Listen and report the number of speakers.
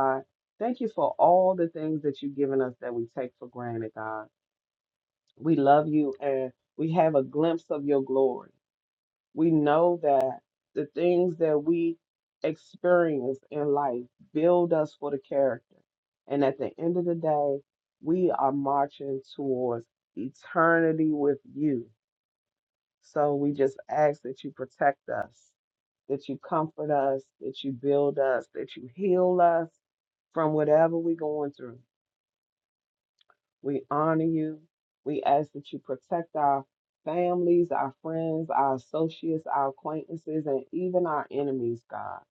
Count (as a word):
one